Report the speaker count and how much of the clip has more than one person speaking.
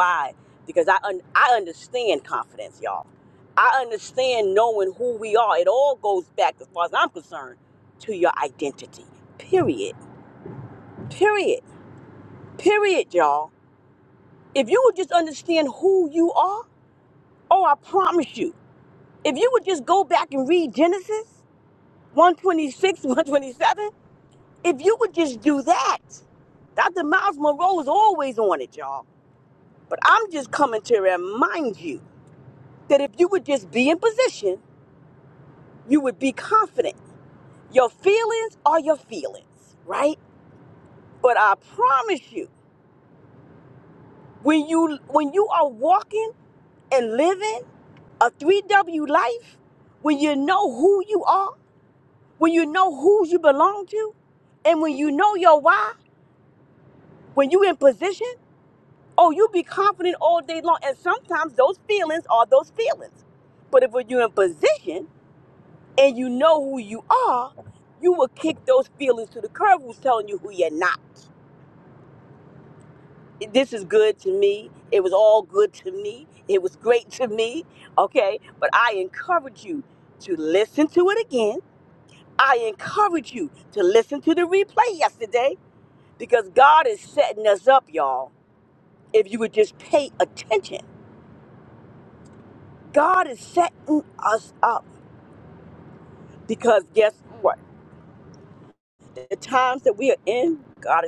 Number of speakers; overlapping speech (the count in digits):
1, no overlap